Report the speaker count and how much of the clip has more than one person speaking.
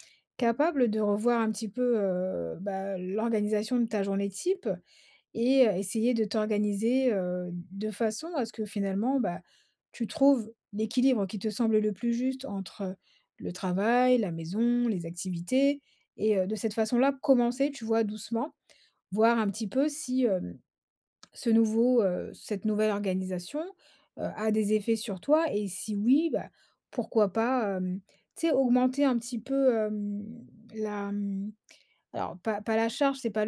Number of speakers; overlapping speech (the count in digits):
1, no overlap